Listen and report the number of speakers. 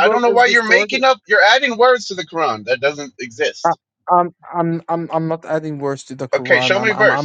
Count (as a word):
two